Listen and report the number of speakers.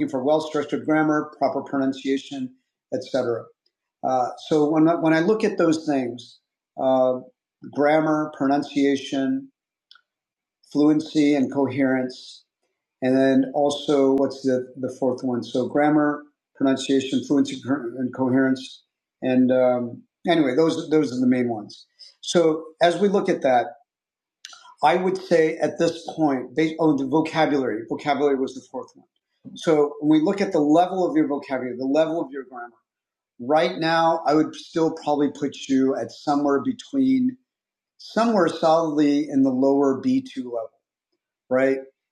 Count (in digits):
1